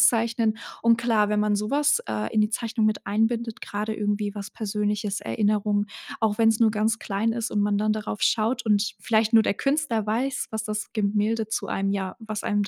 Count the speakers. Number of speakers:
1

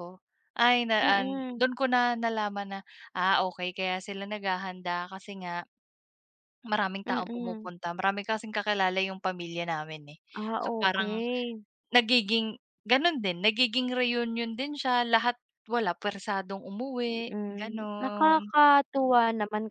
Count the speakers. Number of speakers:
2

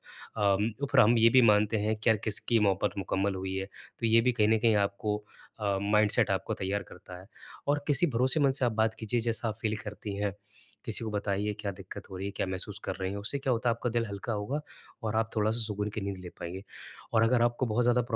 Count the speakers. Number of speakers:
1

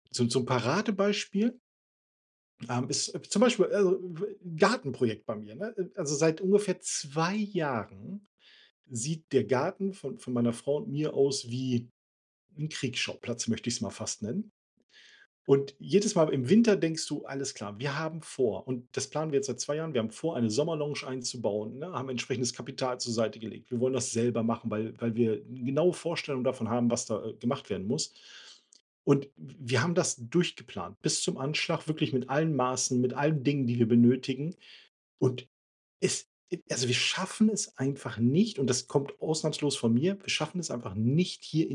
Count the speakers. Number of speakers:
1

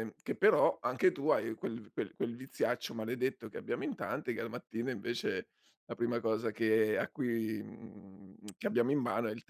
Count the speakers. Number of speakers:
1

